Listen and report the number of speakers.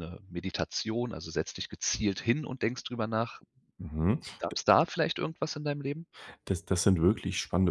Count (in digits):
2